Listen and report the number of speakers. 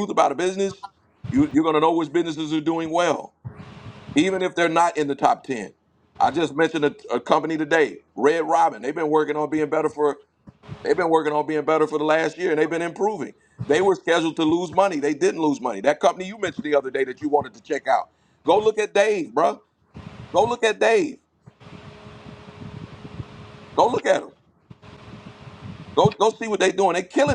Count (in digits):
1